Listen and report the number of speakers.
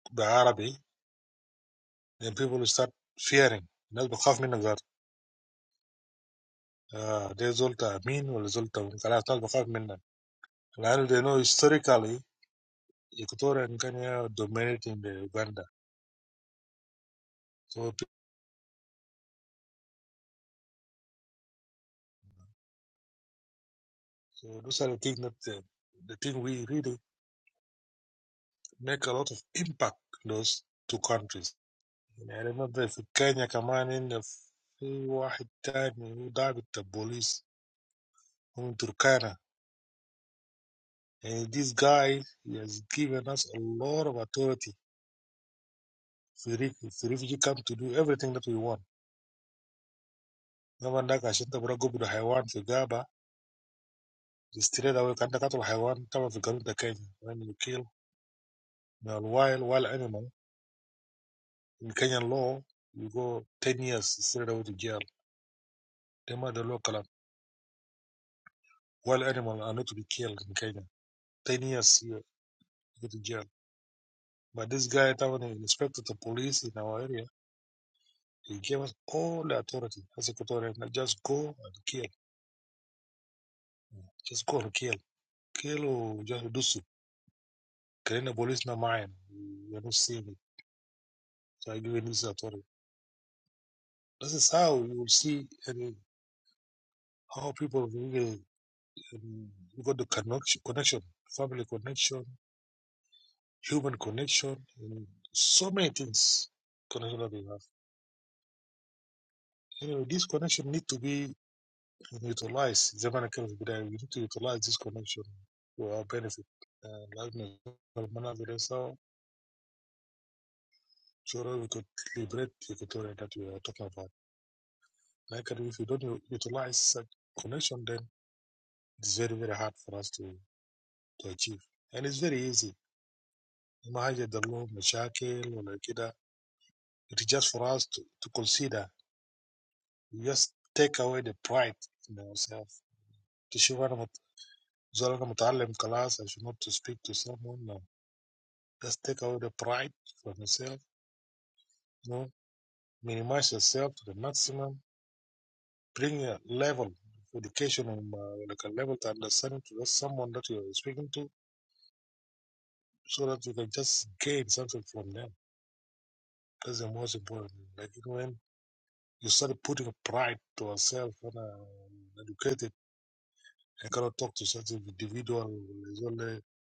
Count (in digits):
1